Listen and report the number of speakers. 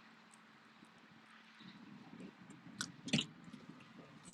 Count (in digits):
0